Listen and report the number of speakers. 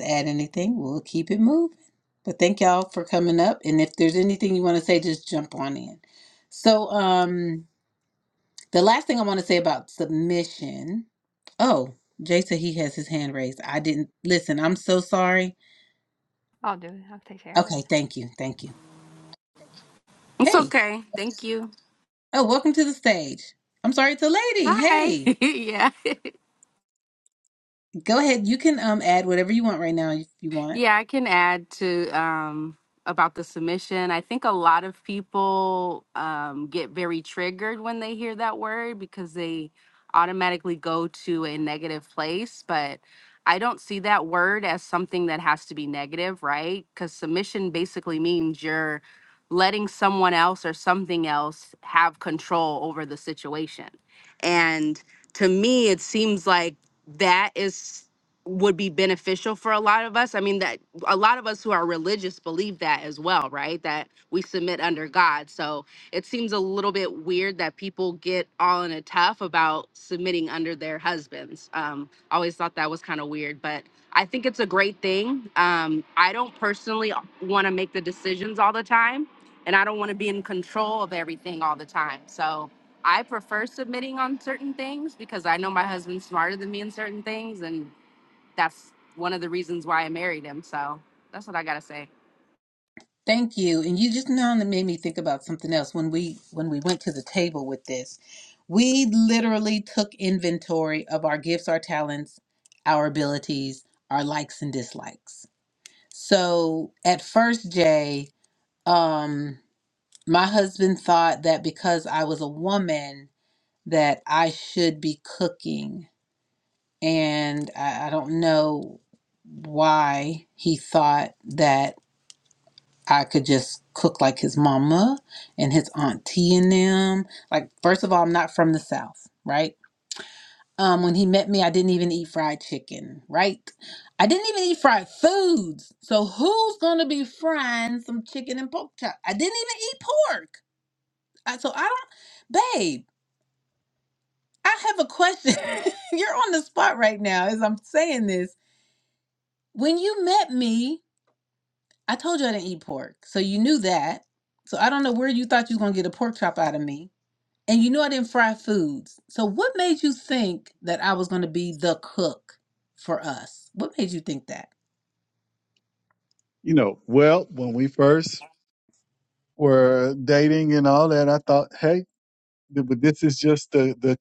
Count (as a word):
four